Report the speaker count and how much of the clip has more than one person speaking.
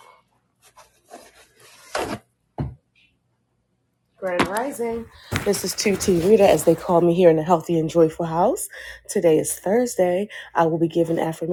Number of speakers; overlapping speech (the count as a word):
one, no overlap